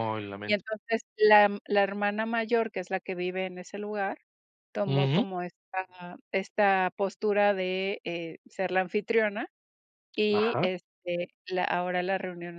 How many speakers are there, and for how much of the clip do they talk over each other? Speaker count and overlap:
two, about 6%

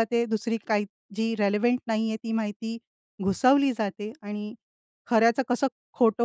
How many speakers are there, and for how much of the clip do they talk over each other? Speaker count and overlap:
one, no overlap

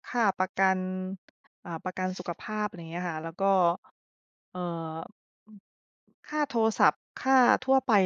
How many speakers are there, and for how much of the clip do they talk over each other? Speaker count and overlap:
one, no overlap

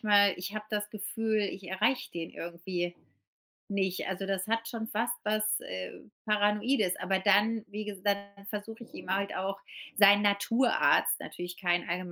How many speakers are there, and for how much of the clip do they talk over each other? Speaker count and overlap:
one, no overlap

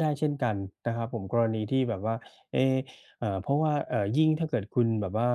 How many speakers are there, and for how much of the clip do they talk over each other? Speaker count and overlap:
one, no overlap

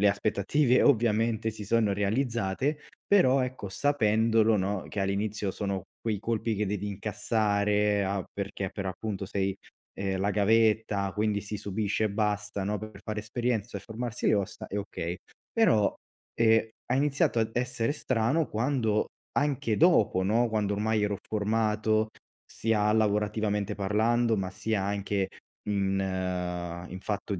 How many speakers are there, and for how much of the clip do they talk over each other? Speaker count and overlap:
one, no overlap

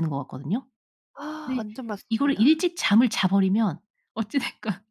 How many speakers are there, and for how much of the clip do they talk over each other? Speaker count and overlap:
two, about 12%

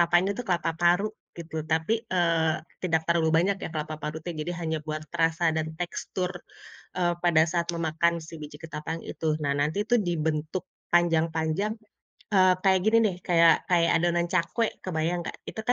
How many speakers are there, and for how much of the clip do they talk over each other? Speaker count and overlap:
one, no overlap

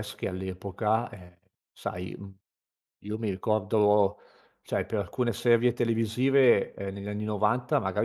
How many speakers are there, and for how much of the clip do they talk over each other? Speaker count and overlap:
one, no overlap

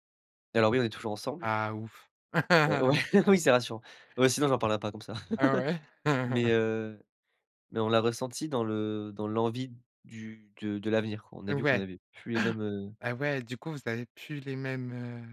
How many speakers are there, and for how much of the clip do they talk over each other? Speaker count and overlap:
two, about 2%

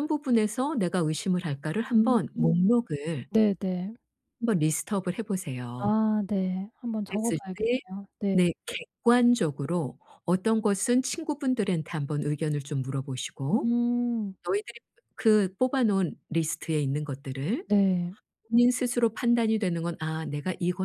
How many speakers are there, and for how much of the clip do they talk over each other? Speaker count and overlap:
two, about 6%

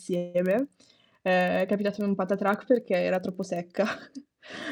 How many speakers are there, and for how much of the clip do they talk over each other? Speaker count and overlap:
one, no overlap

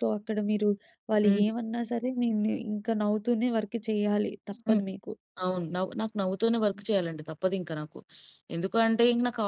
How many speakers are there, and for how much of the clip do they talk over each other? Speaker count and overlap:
two, about 5%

